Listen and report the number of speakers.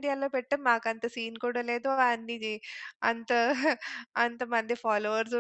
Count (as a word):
one